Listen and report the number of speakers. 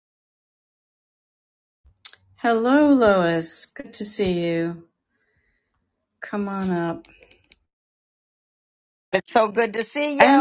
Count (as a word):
two